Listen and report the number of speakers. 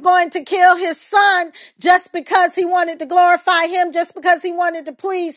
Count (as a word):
one